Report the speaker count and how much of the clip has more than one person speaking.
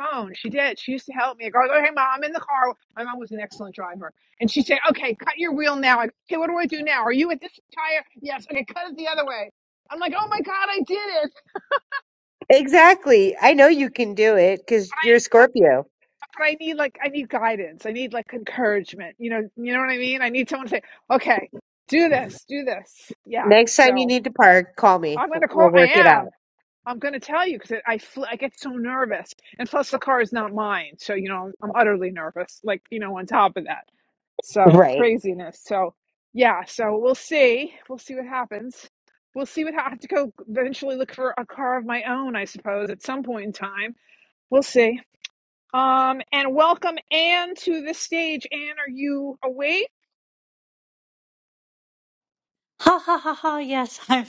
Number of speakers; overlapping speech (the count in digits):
3, about 5%